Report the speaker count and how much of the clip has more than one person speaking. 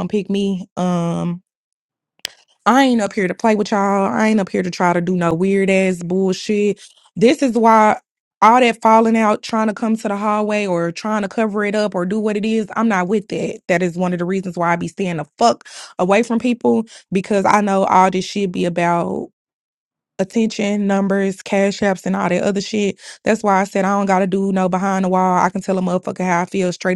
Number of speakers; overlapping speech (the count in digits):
1, no overlap